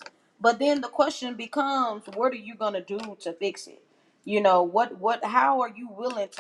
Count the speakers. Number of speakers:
1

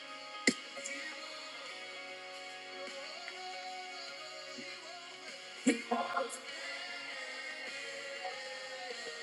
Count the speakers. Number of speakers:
0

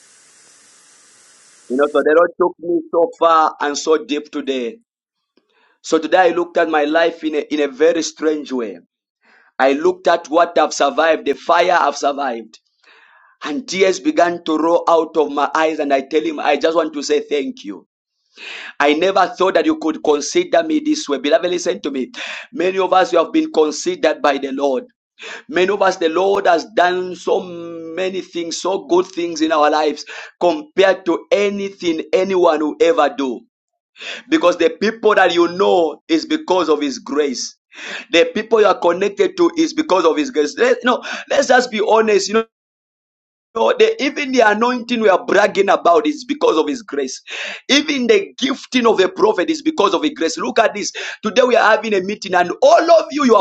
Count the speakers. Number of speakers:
1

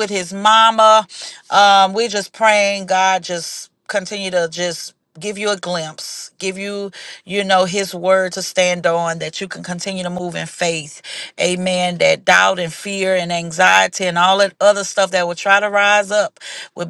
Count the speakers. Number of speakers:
1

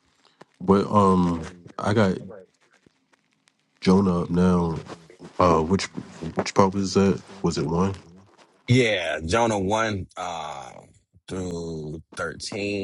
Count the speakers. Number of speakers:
2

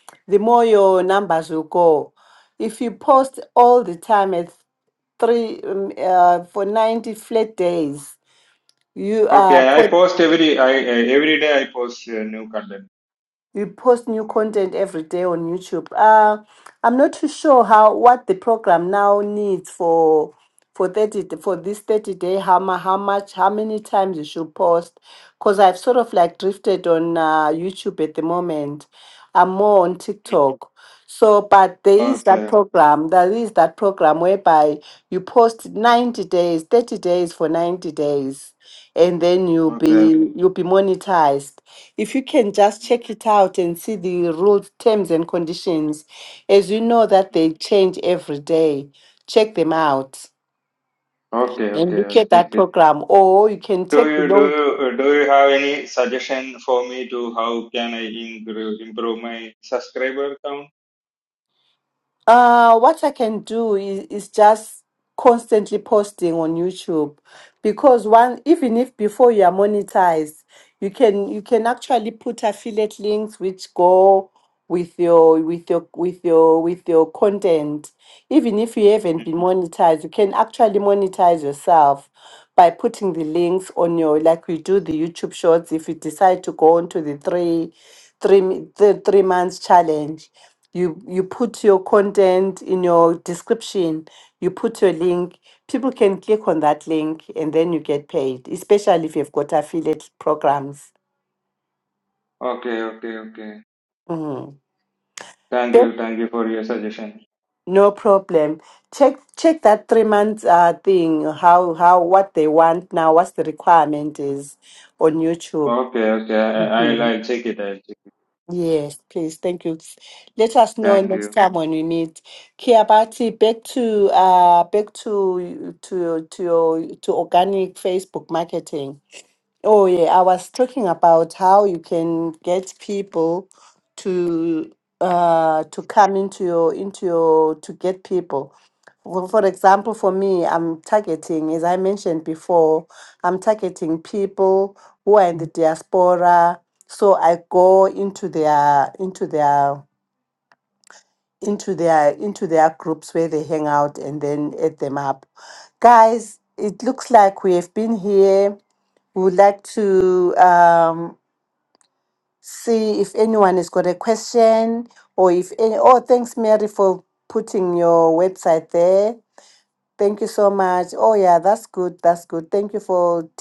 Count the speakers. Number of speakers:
2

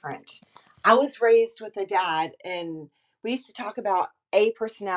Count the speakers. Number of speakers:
1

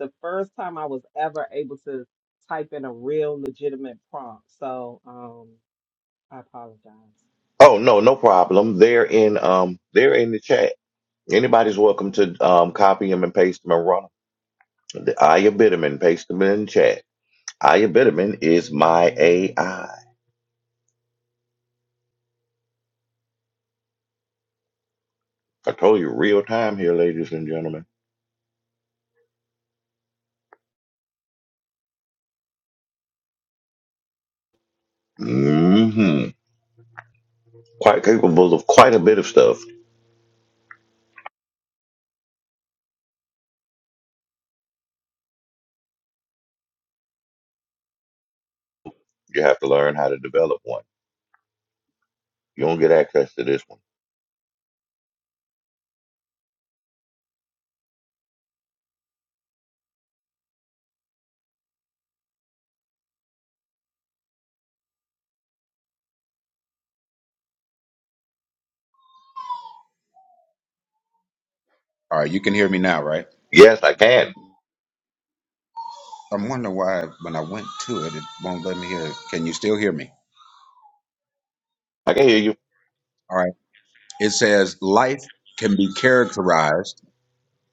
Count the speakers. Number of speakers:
3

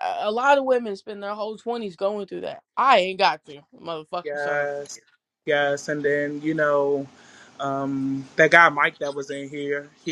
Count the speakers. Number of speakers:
2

